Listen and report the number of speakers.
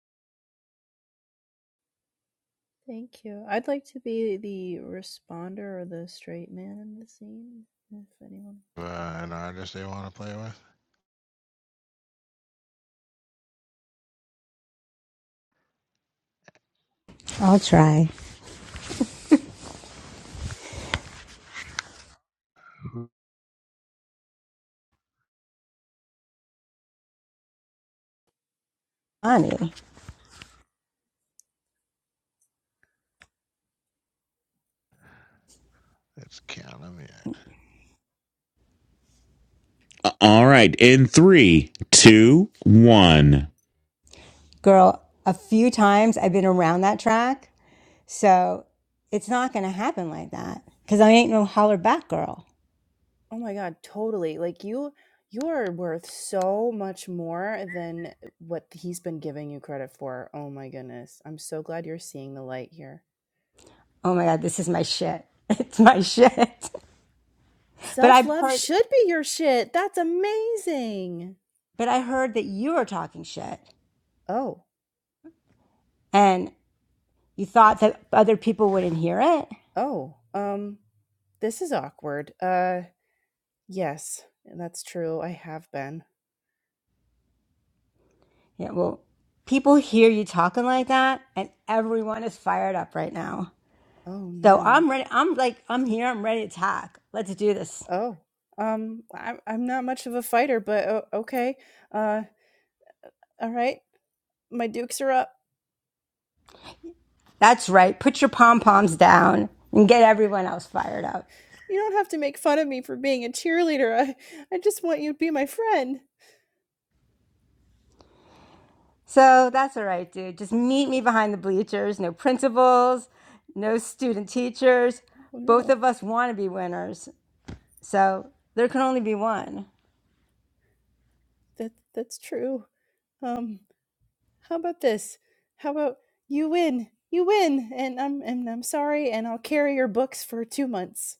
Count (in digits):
4